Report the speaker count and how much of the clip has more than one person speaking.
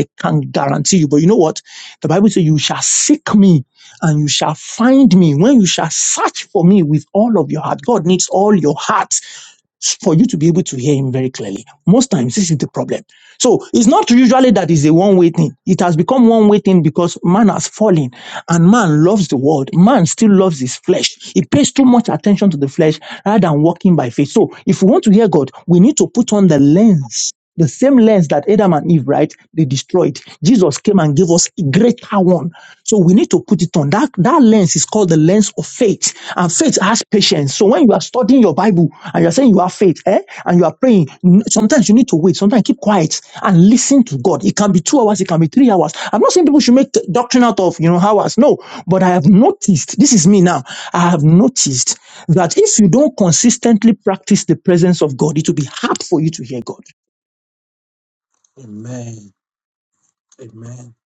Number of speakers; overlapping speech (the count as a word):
two, no overlap